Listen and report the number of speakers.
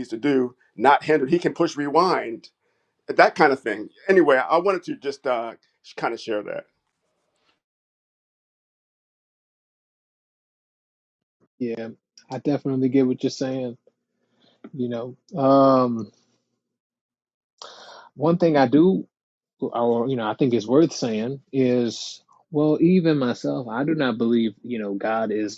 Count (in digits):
2